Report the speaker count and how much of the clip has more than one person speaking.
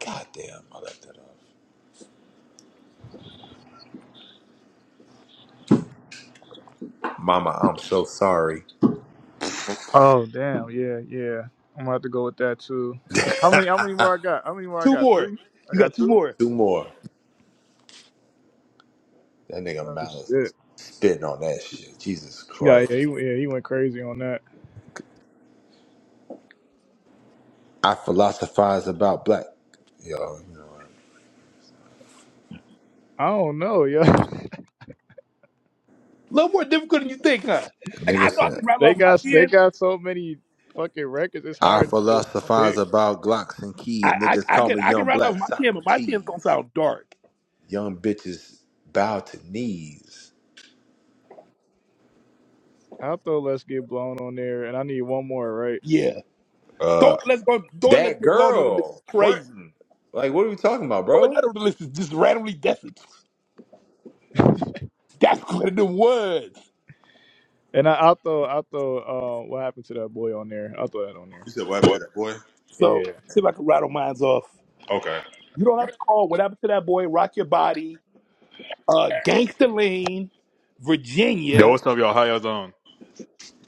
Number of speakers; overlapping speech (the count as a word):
four, about 10%